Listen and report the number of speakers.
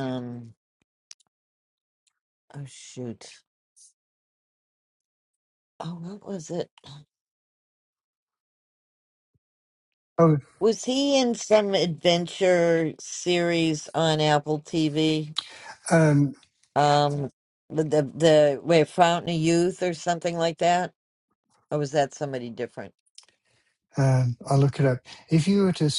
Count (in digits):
2